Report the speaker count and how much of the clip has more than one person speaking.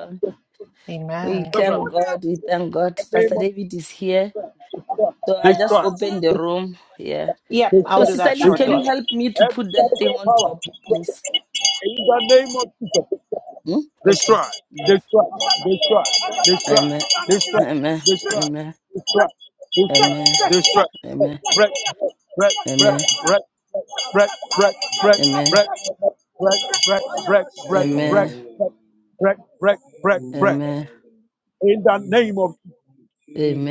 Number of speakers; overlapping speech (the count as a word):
four, about 25%